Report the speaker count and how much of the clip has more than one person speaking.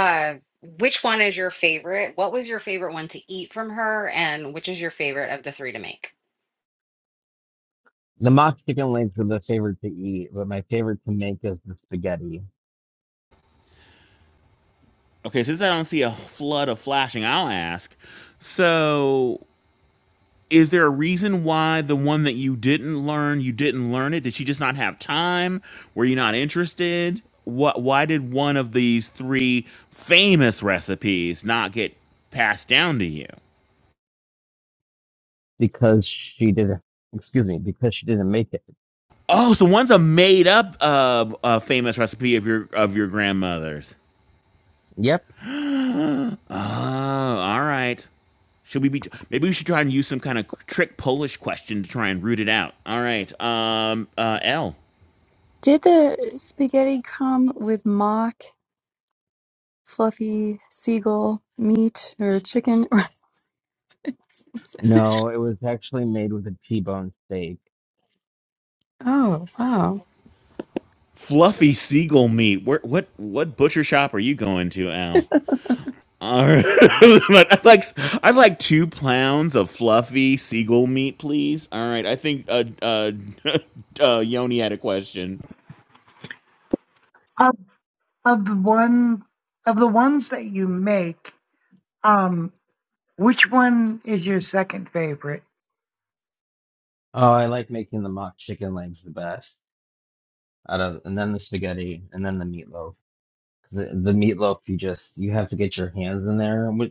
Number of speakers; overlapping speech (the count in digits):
5, no overlap